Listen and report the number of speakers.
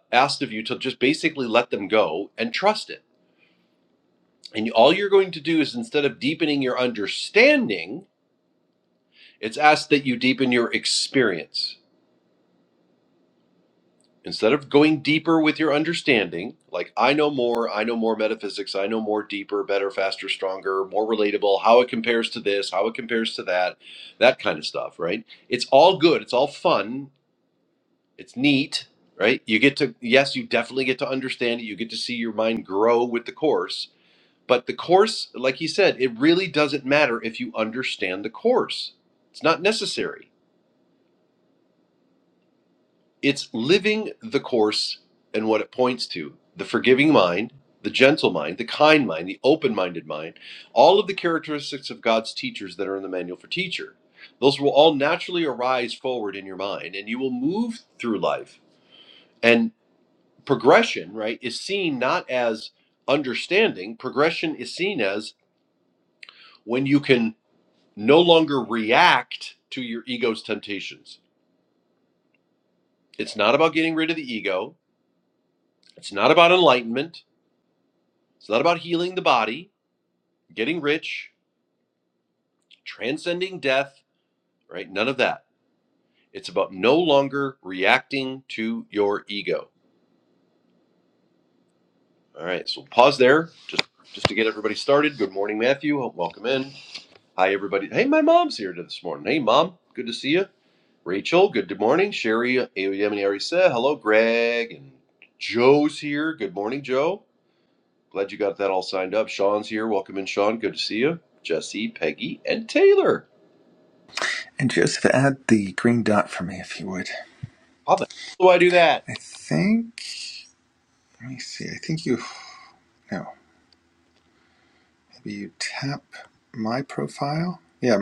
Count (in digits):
2